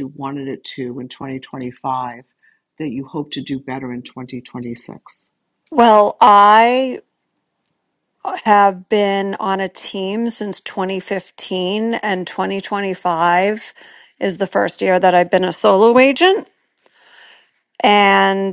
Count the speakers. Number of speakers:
2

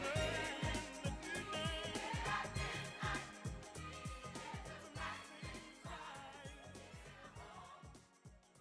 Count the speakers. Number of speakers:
0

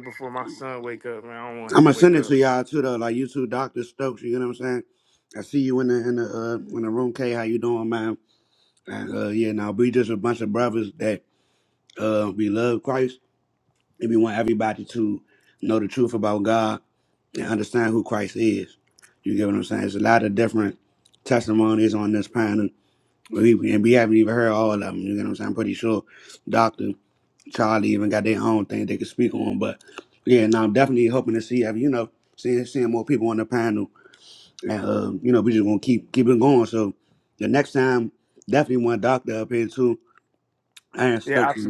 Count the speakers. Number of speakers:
2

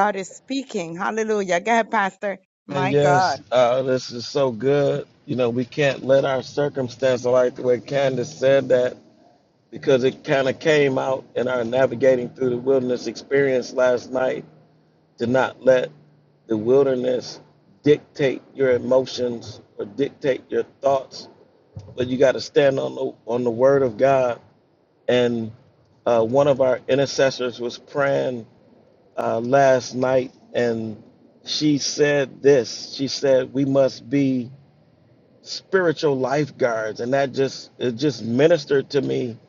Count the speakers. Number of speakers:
2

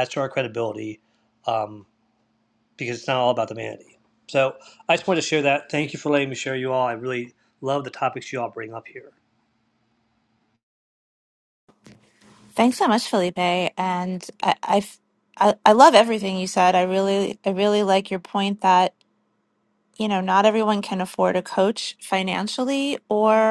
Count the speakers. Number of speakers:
2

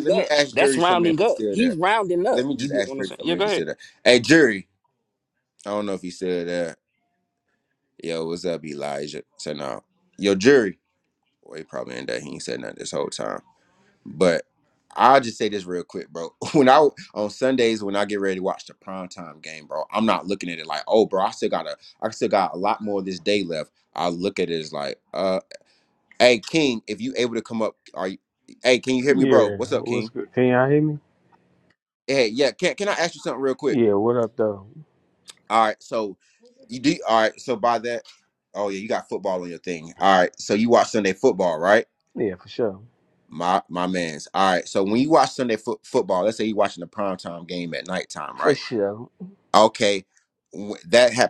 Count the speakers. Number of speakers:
3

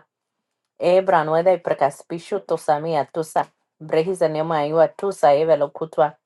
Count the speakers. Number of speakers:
1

